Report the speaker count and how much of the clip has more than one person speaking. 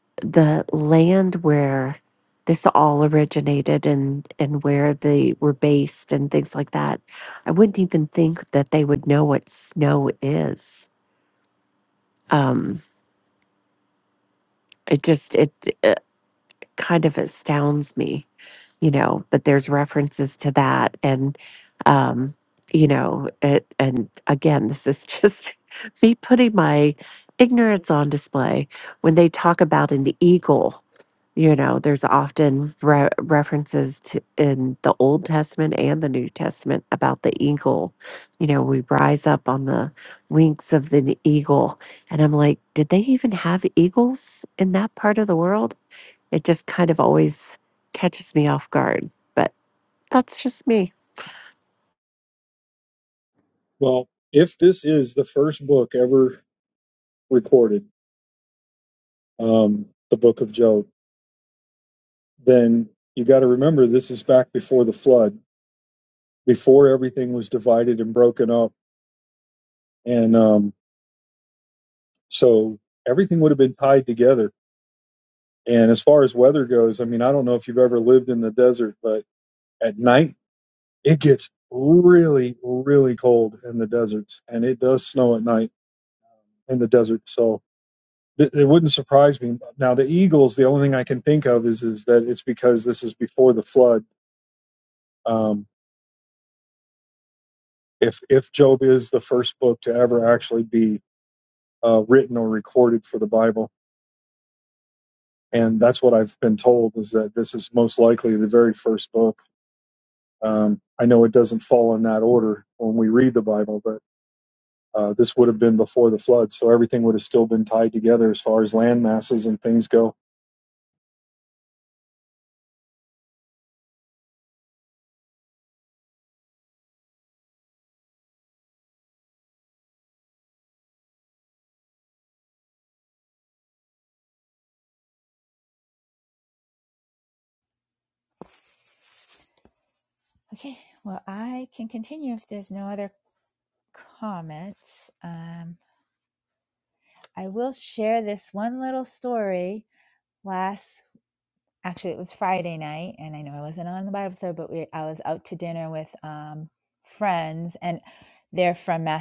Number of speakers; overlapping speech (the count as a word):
three, no overlap